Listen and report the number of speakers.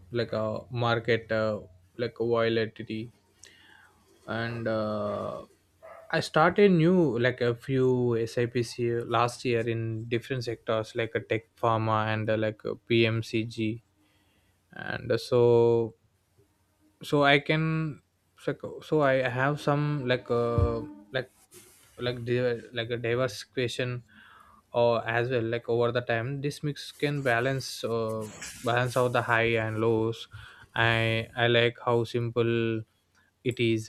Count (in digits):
1